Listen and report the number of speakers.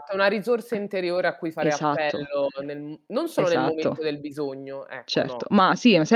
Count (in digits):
2